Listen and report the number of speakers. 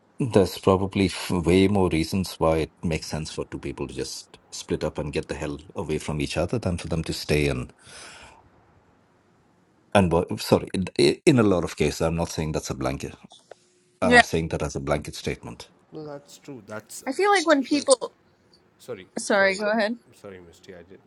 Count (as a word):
three